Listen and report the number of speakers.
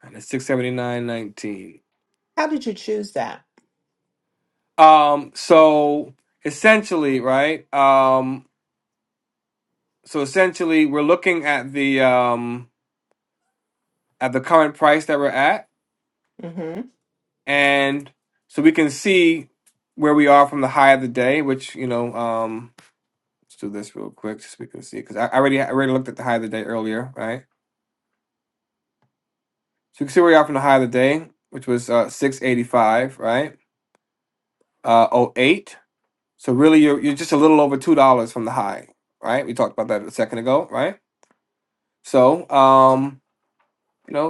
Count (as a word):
two